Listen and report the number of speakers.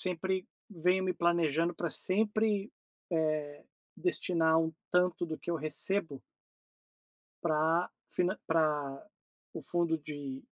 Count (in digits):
1